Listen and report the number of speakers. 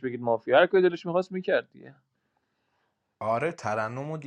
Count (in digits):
2